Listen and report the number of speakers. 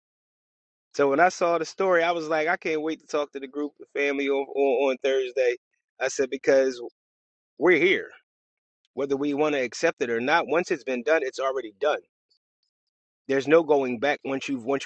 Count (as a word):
one